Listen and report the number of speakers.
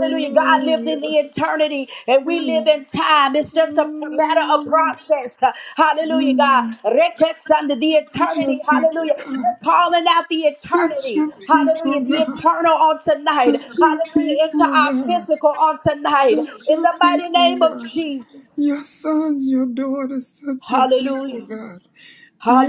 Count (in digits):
2